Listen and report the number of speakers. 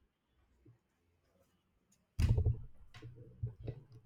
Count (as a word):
zero